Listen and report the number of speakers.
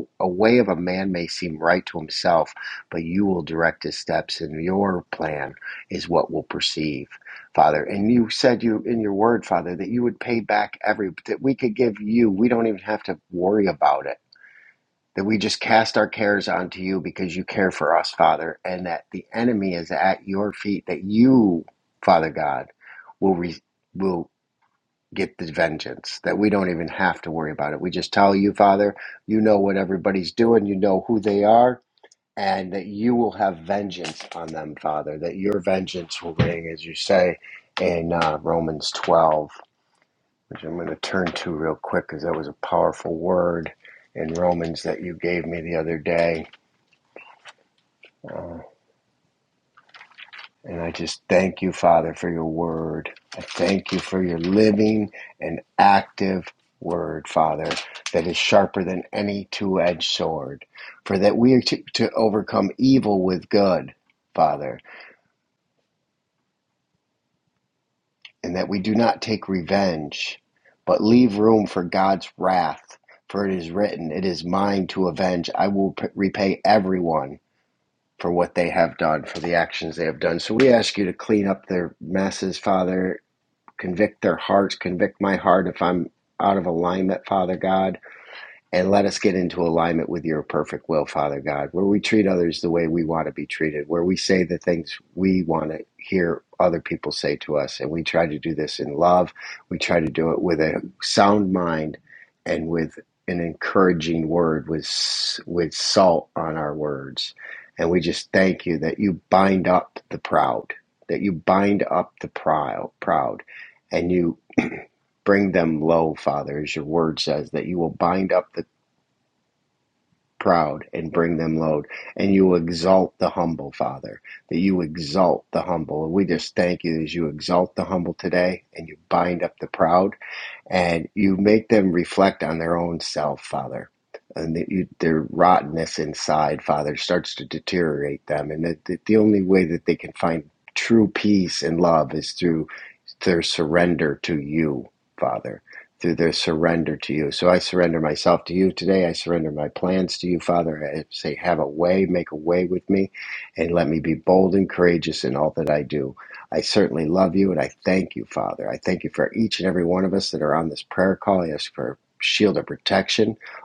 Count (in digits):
1